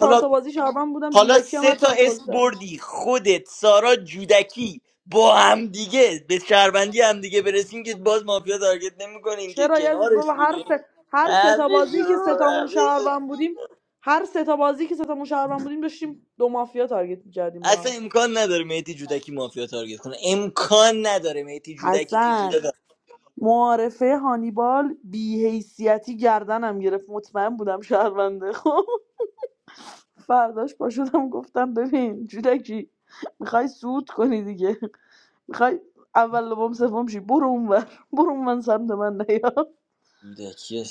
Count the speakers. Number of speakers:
2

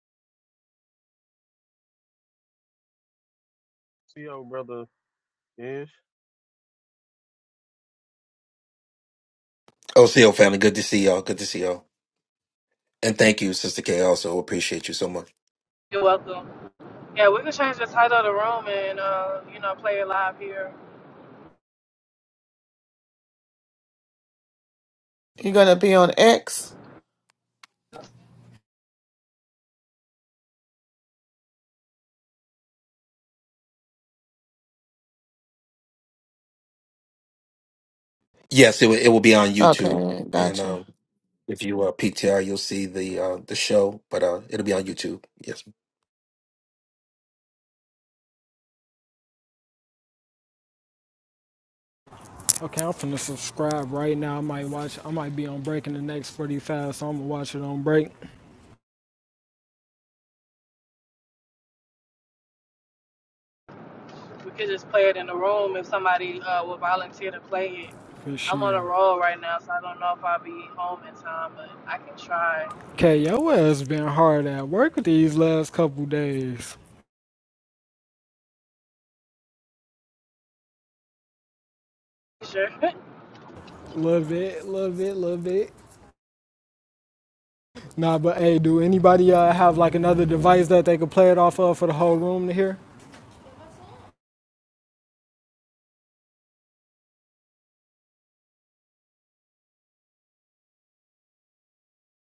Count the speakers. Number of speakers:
5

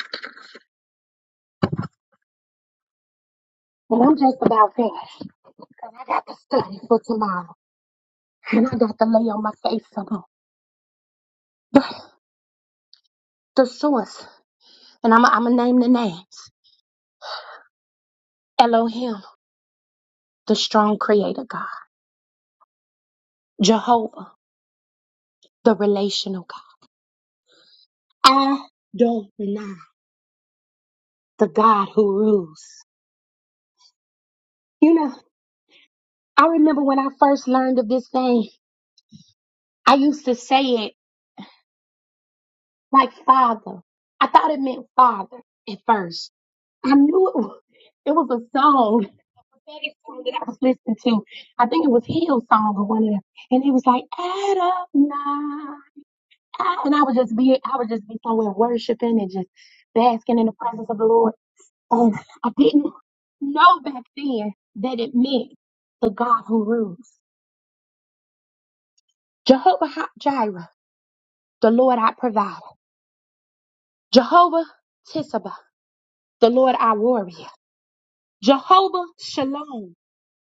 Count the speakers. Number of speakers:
1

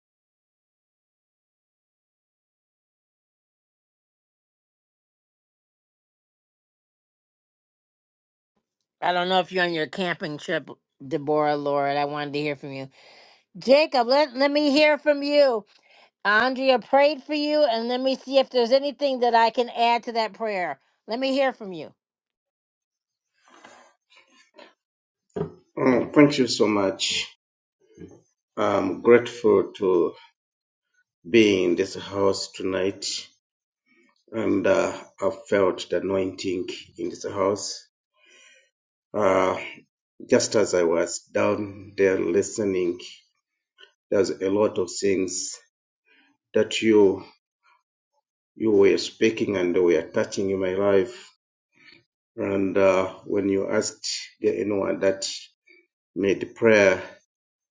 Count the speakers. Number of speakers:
2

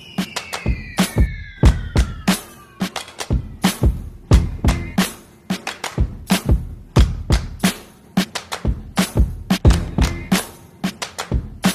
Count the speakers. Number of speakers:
0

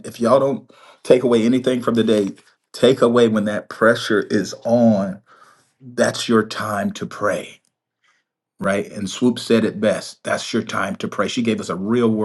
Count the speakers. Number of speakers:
1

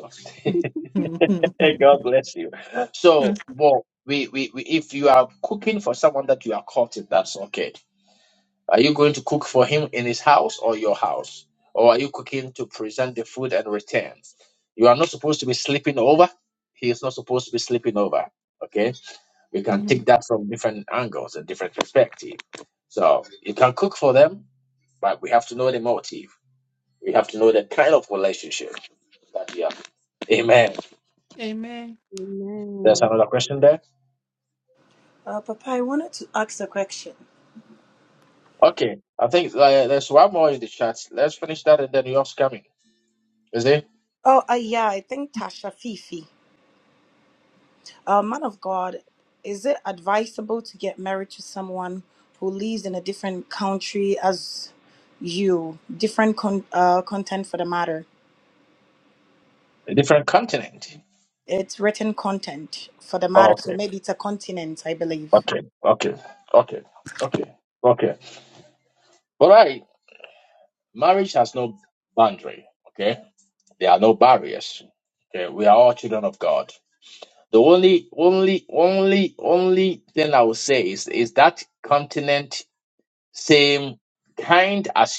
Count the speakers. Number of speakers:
4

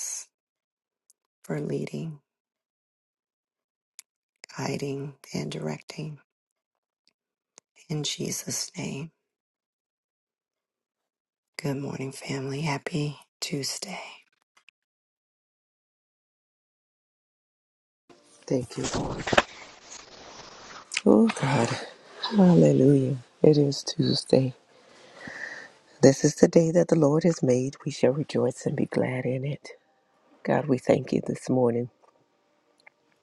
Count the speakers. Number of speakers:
2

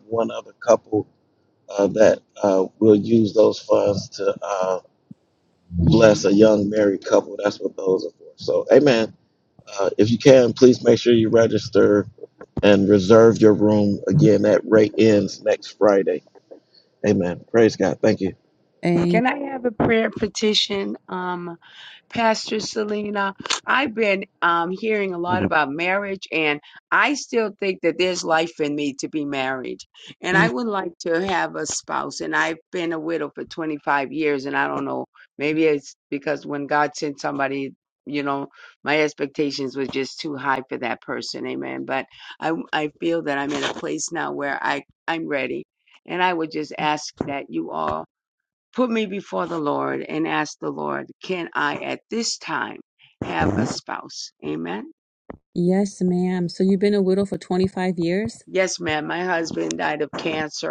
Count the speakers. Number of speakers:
3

